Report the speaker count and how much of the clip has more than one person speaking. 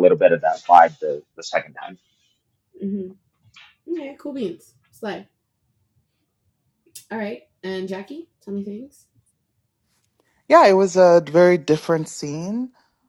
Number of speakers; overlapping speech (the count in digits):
3, no overlap